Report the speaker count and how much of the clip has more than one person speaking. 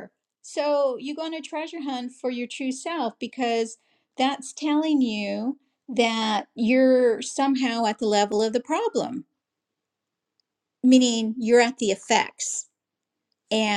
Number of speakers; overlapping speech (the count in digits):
1, no overlap